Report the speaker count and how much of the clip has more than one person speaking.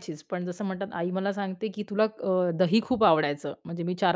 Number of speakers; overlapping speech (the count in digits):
1, no overlap